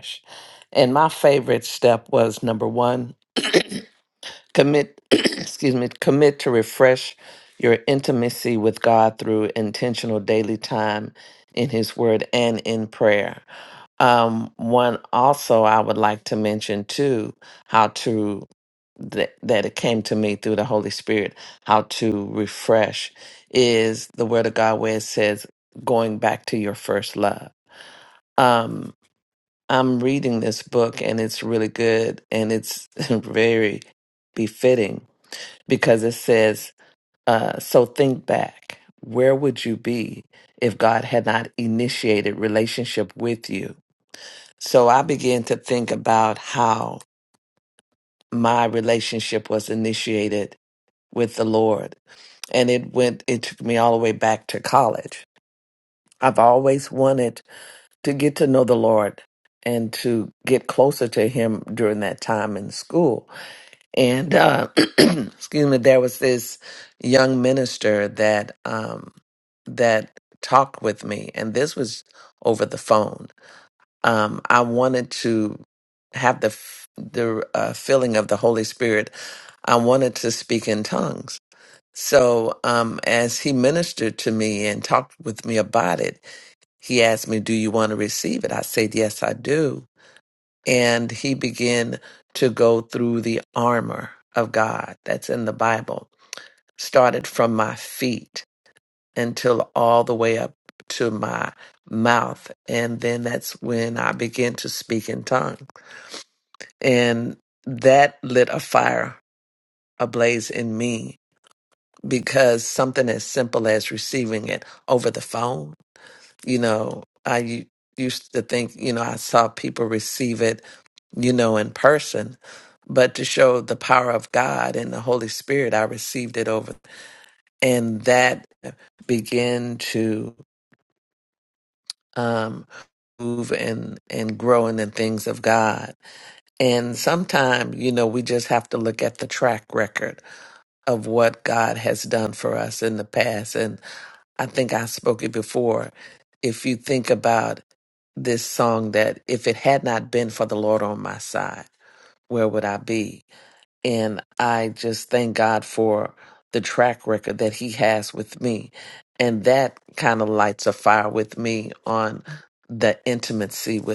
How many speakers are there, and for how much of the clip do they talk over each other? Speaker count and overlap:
1, no overlap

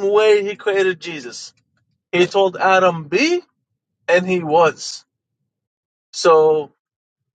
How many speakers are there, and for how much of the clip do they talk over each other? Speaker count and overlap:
1, no overlap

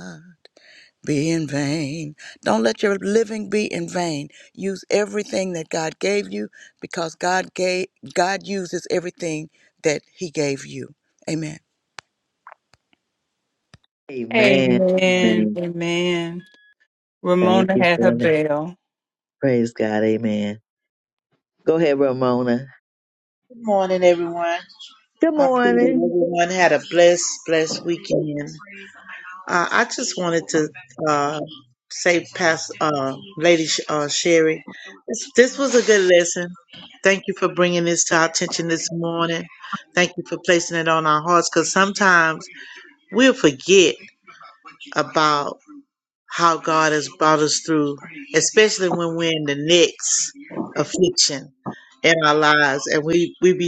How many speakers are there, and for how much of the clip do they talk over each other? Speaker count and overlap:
4, about 5%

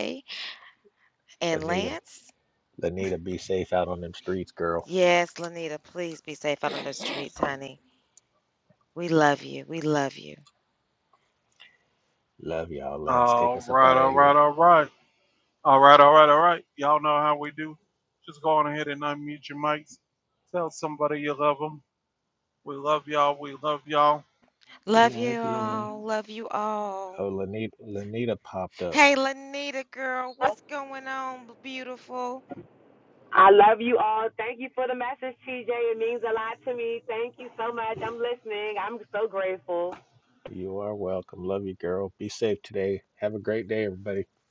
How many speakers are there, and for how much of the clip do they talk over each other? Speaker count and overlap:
4, about 6%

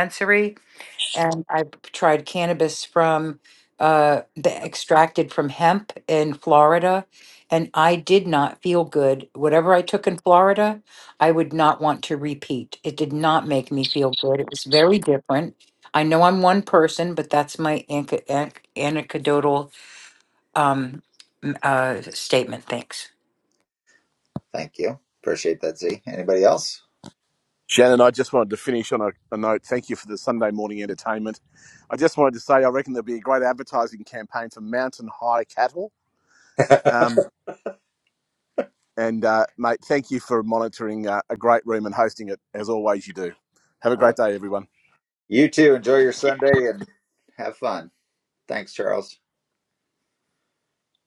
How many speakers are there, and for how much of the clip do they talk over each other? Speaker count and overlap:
3, under 1%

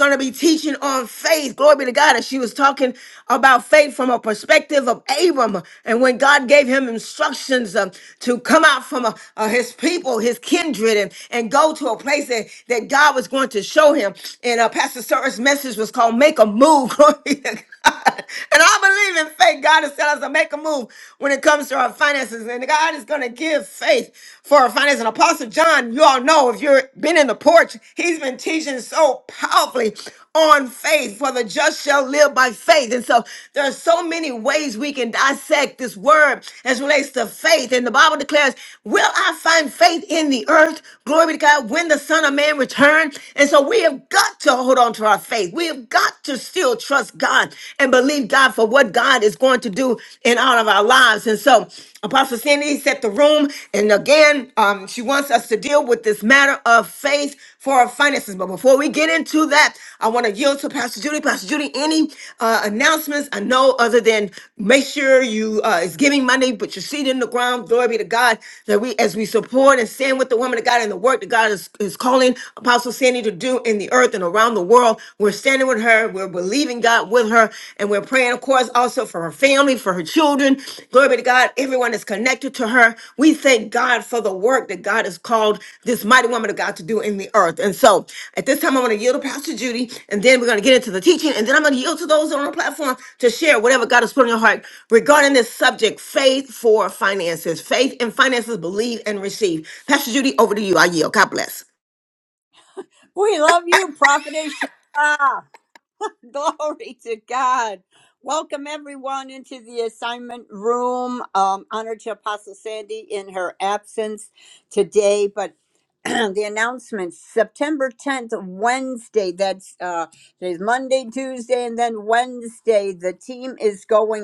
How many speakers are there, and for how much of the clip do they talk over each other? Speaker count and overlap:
2, no overlap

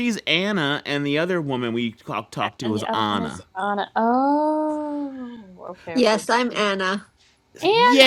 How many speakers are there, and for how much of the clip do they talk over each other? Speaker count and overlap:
3, about 20%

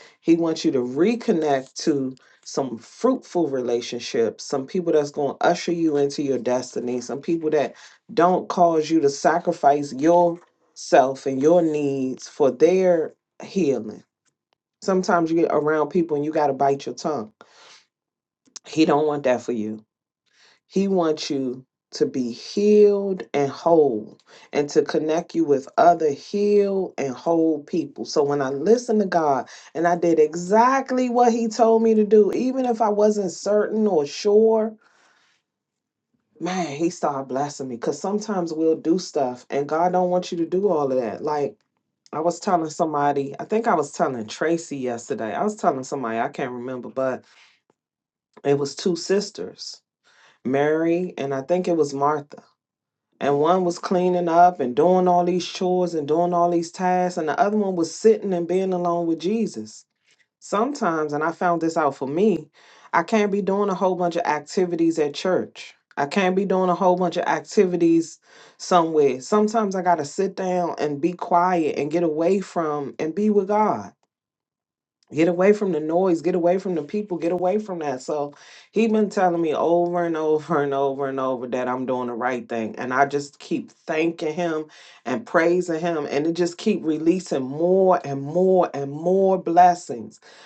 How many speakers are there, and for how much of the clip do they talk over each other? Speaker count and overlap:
1, no overlap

